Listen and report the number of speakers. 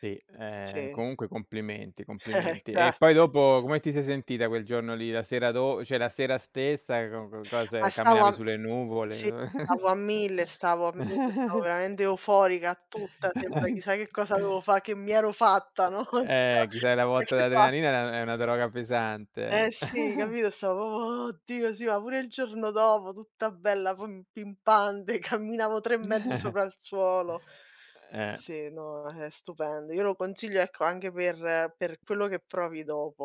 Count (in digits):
2